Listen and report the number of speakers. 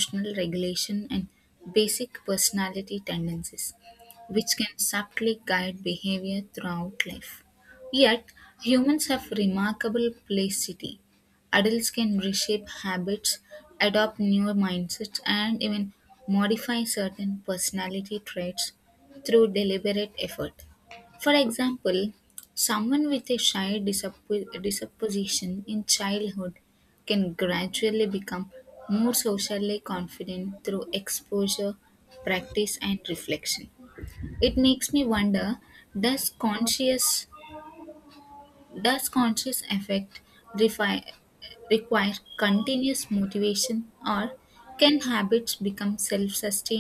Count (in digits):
1